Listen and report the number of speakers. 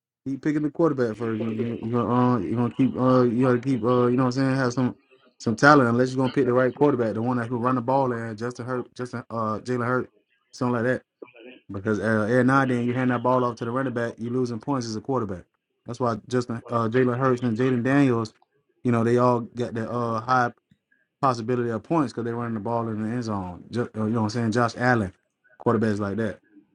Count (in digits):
1